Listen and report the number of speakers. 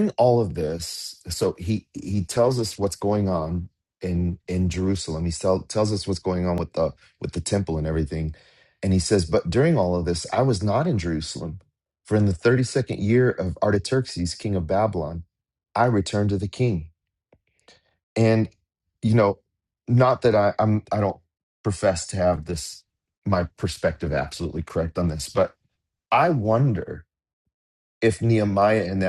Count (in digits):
1